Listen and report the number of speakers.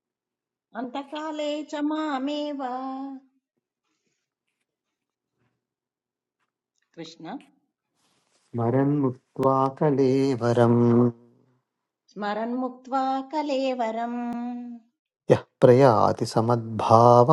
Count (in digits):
2